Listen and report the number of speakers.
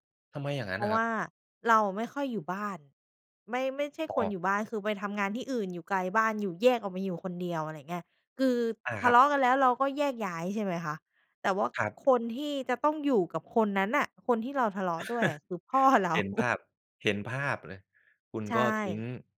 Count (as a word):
two